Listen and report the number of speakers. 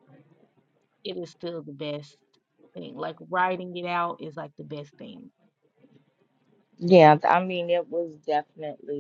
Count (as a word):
two